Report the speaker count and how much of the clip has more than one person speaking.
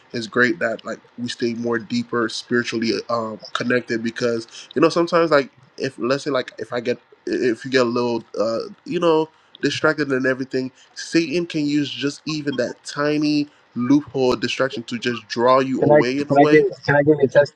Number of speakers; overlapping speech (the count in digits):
2, about 5%